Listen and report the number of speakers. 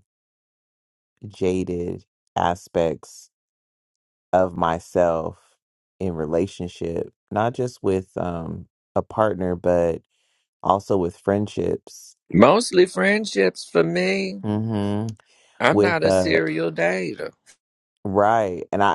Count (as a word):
two